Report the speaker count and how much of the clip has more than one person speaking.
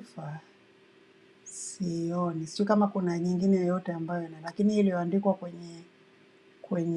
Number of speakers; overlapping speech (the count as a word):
one, no overlap